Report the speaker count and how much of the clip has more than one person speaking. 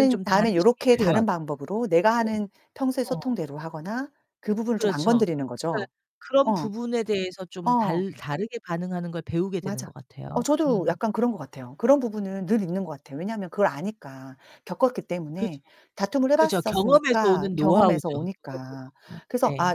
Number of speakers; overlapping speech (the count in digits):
2, about 30%